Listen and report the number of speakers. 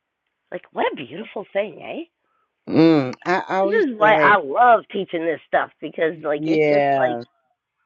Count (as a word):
two